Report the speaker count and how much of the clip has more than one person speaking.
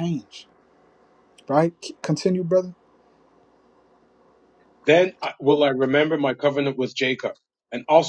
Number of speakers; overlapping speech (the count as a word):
two, no overlap